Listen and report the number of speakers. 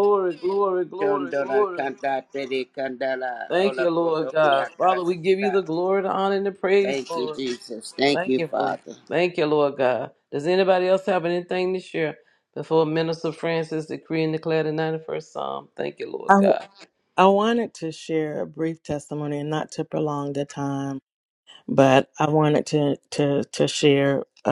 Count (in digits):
3